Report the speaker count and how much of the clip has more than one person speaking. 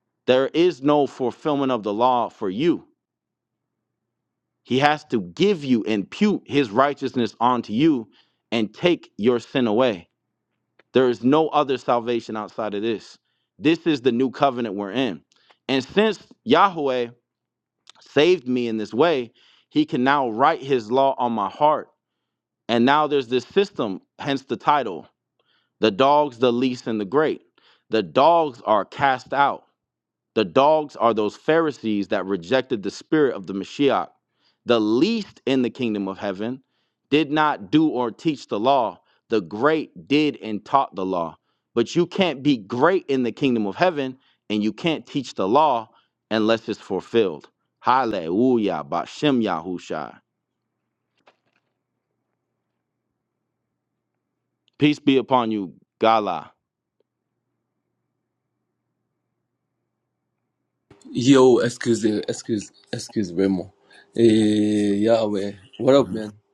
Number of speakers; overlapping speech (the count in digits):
2, under 1%